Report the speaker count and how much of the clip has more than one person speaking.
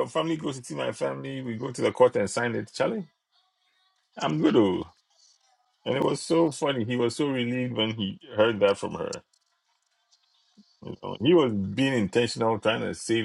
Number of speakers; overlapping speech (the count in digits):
1, no overlap